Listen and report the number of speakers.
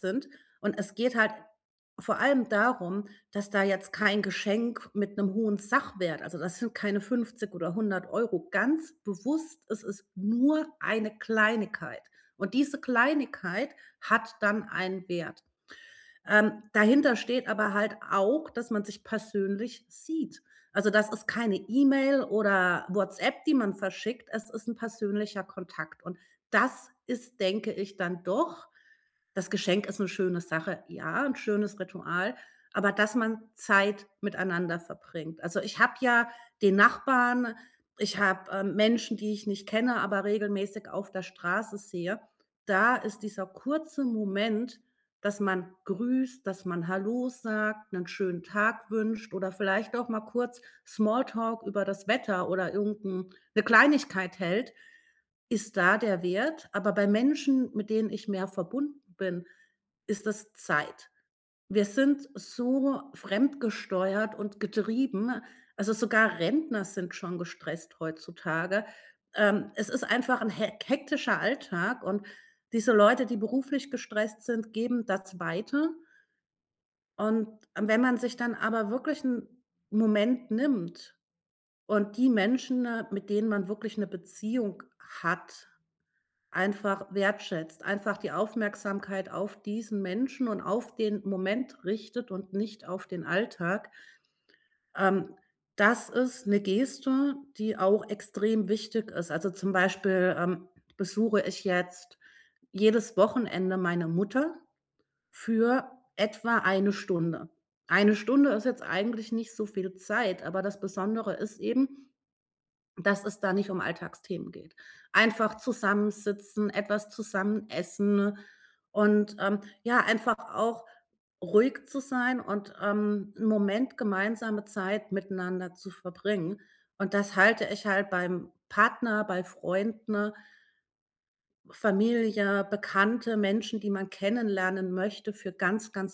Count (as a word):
one